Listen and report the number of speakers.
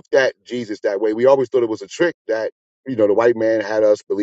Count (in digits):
1